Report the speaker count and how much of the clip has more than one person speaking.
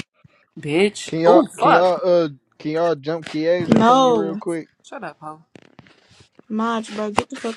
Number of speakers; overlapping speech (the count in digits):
3, about 19%